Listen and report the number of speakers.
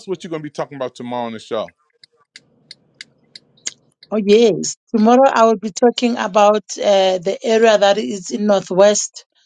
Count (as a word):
two